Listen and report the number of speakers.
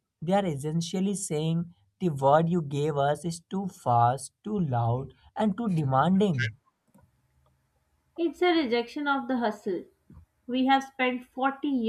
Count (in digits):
2